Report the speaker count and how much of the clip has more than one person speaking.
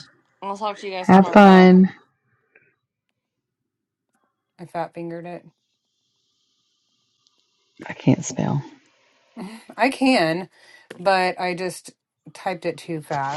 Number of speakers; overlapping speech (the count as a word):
three, about 5%